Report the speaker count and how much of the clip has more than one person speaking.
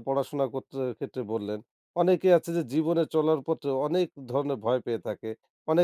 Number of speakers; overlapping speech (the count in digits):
1, no overlap